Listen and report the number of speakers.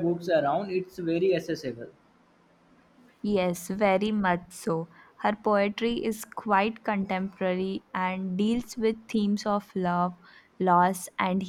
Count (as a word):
two